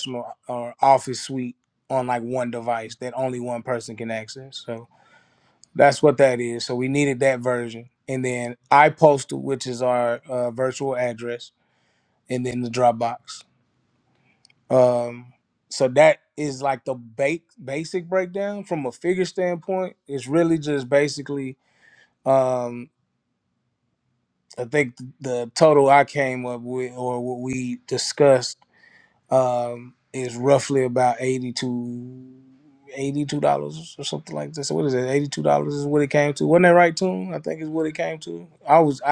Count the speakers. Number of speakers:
one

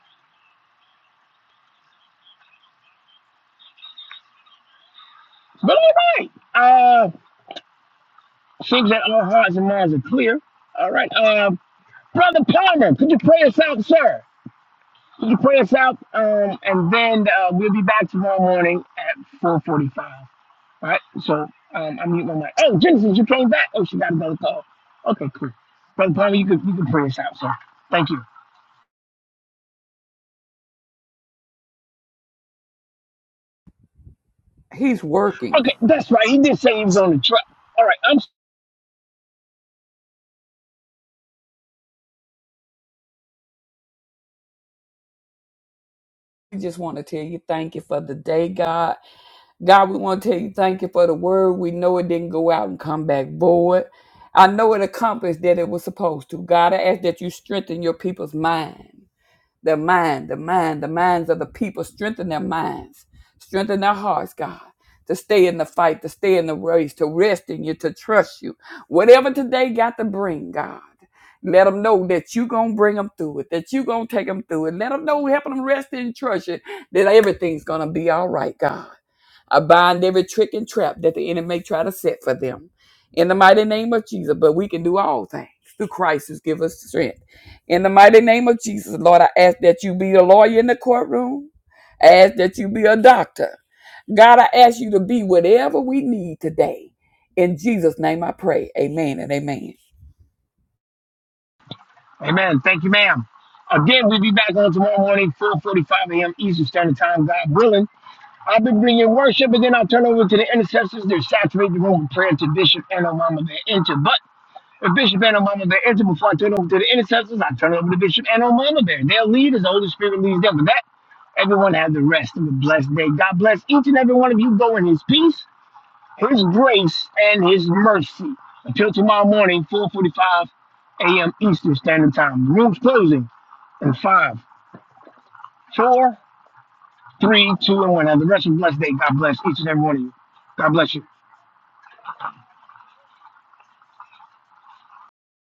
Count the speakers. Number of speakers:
two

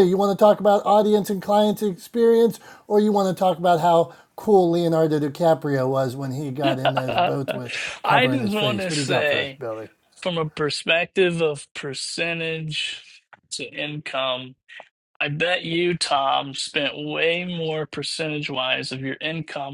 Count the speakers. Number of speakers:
two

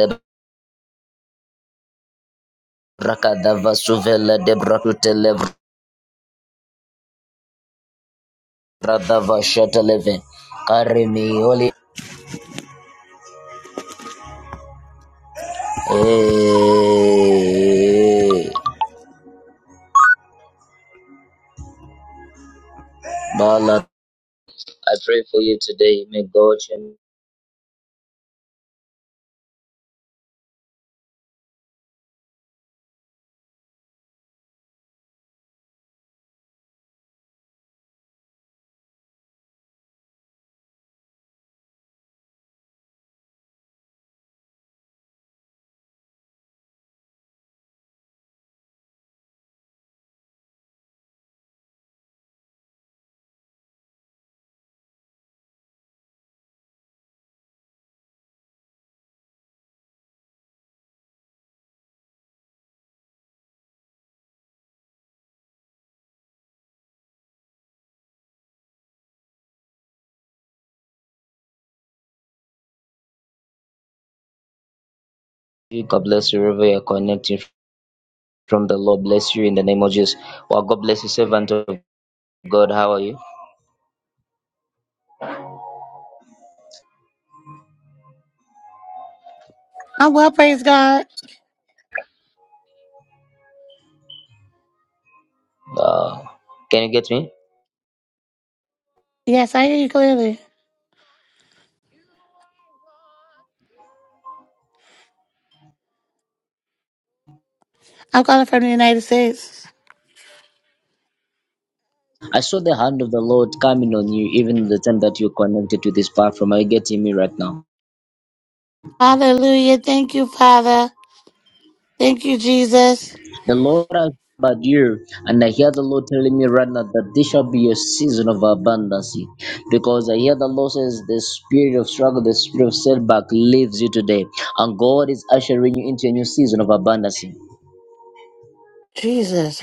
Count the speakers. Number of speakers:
two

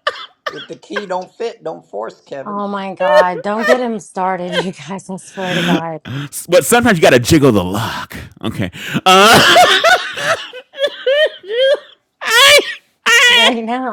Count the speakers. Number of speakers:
three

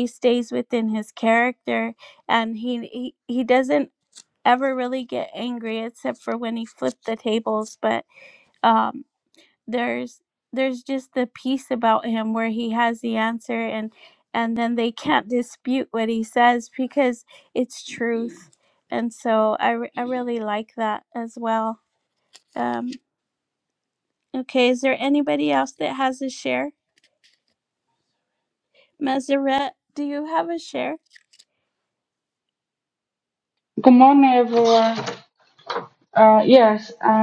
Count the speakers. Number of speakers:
two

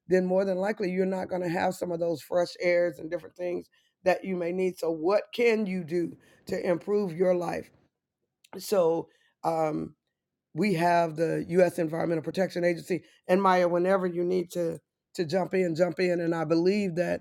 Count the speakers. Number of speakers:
one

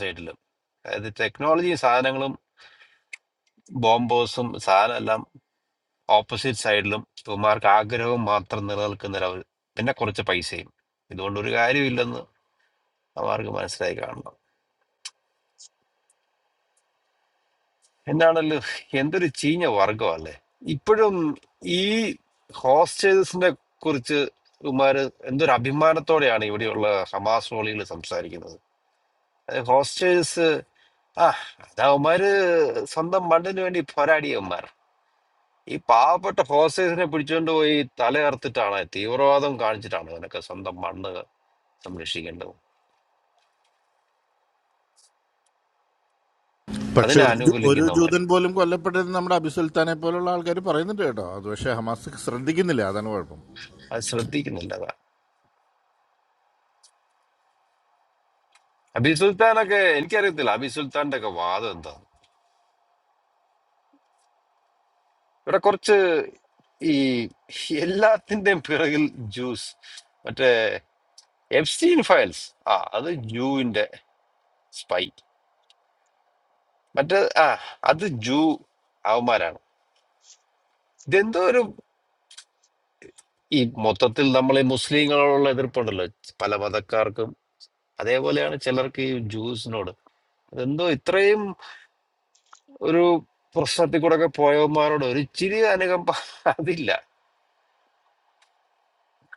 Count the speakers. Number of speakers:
two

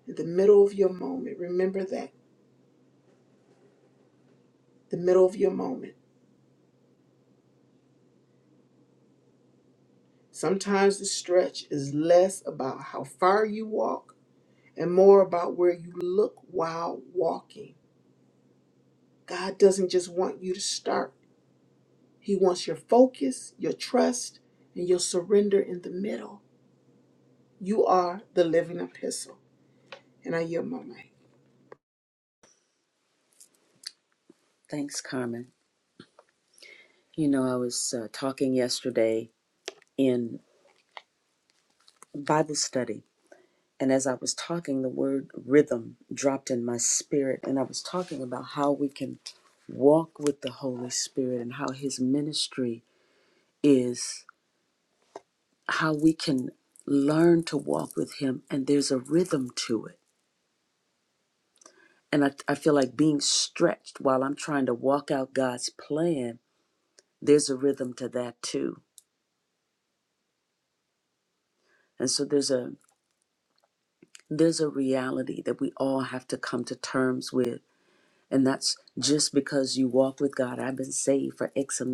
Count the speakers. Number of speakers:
two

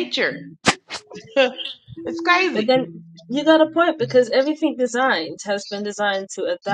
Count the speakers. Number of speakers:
two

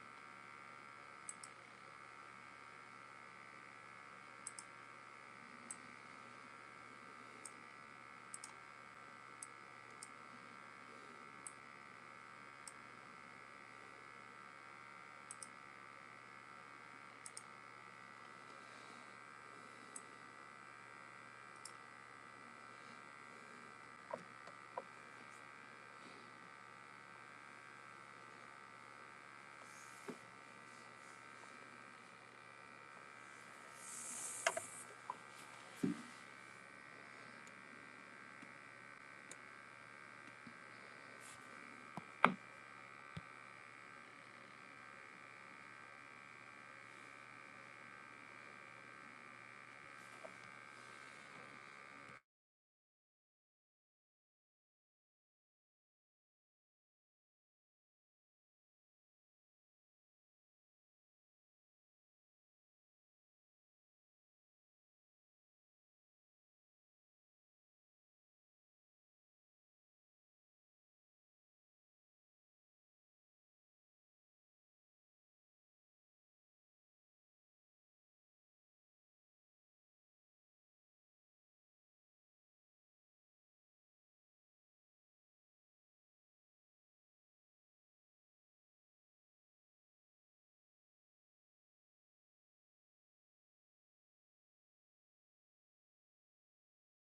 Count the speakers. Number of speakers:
zero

